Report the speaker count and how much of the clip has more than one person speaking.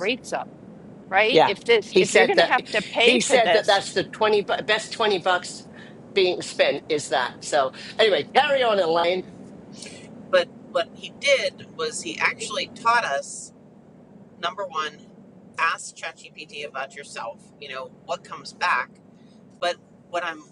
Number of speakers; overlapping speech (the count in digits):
3, about 7%